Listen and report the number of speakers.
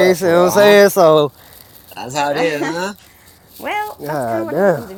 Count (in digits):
3